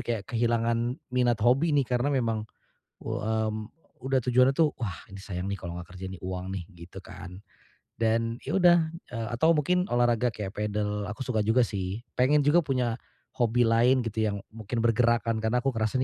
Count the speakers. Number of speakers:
1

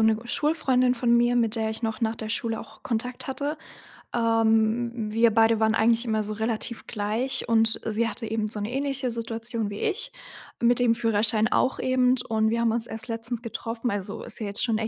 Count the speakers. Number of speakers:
1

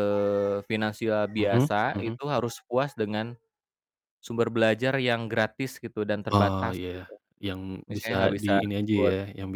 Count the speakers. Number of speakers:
2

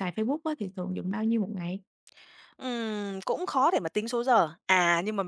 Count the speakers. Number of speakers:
2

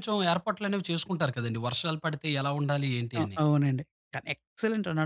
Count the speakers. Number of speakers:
2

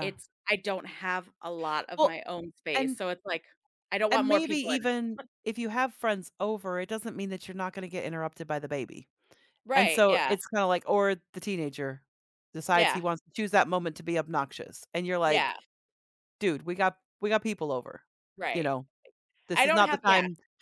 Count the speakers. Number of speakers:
2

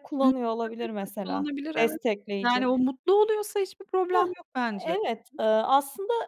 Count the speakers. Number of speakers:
2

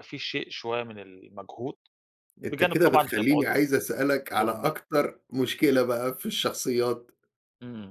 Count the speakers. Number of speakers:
2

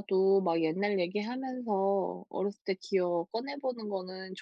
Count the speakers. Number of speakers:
1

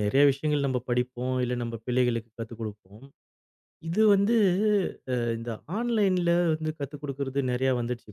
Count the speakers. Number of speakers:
1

